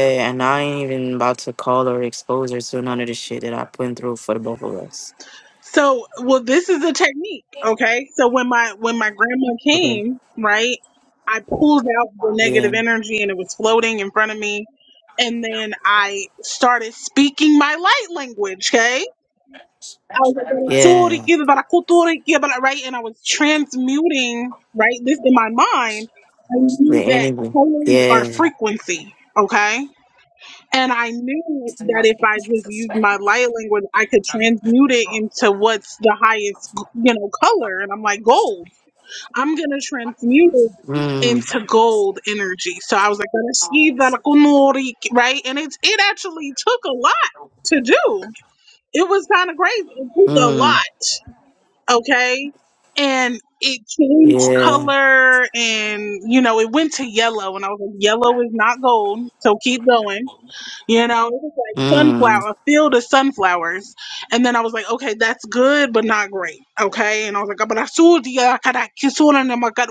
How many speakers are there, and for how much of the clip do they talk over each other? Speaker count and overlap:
2, about 7%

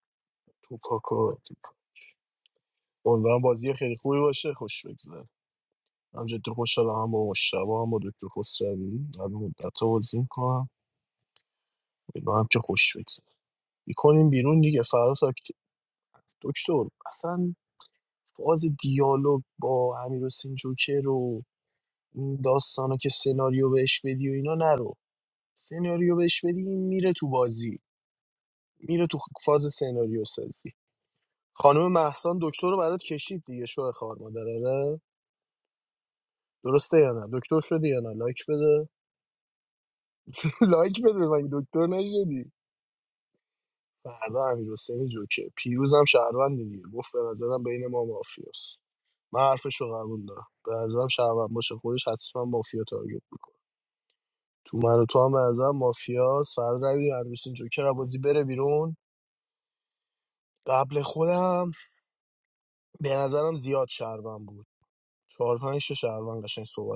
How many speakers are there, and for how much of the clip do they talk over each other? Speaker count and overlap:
1, no overlap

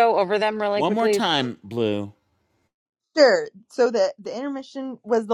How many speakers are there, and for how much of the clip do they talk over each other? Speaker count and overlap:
3, about 8%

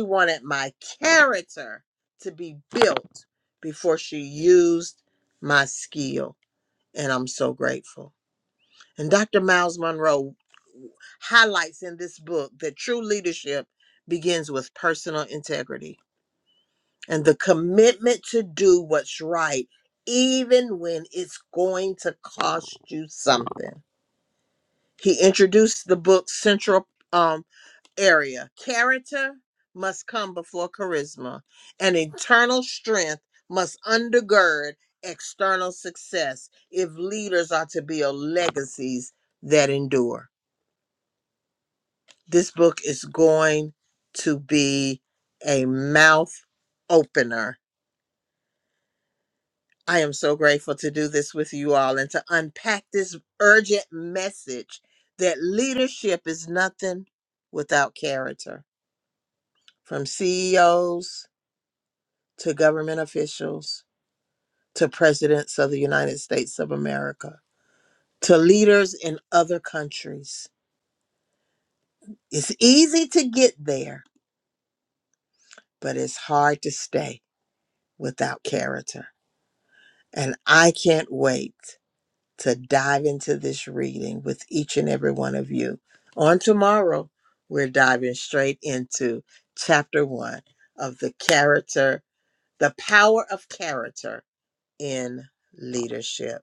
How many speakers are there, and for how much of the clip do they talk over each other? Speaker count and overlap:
1, no overlap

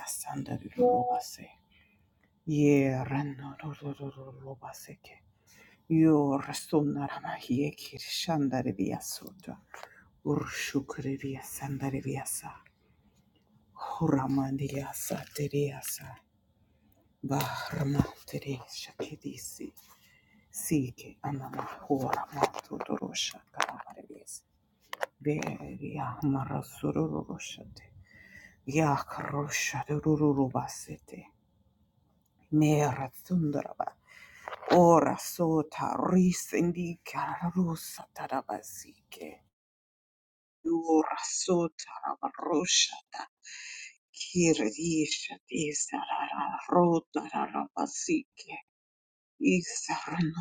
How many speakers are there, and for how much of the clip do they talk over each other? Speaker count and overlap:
1, no overlap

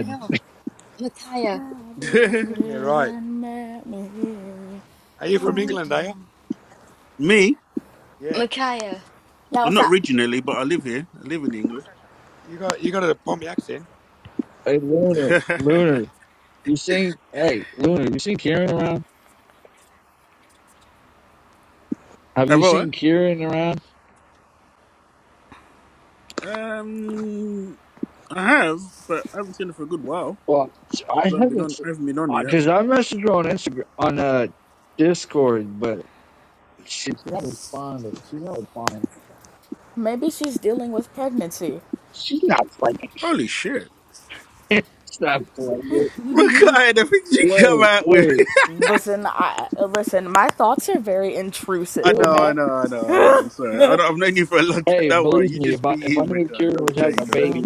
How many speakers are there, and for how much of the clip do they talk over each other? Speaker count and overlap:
5, about 13%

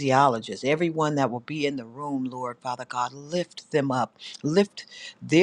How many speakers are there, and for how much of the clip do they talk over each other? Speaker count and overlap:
1, no overlap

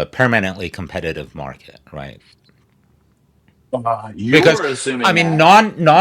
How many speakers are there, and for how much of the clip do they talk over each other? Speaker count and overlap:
2, about 13%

